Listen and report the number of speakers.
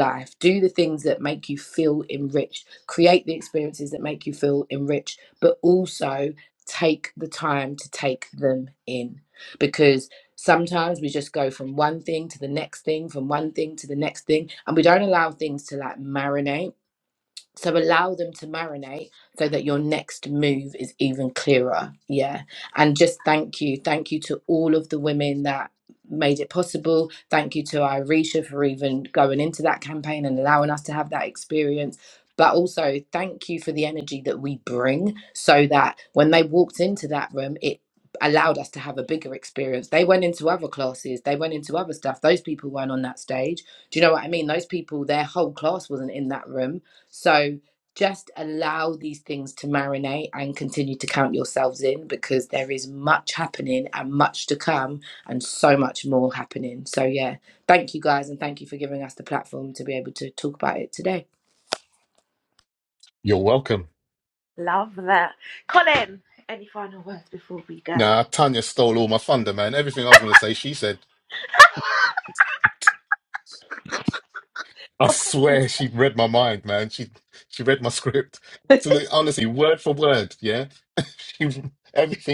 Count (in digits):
3